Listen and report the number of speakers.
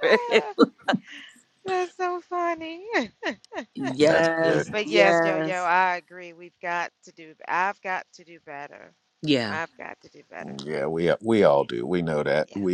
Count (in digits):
3